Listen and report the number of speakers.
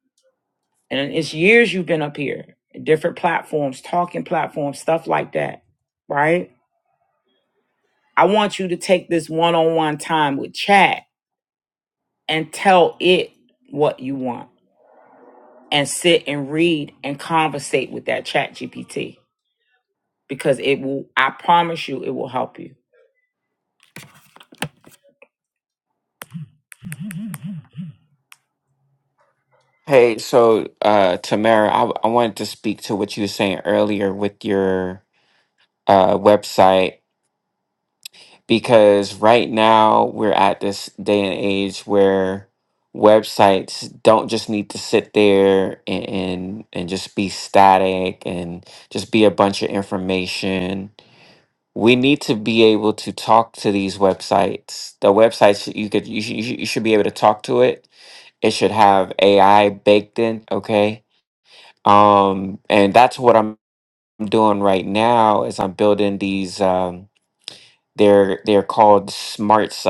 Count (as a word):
two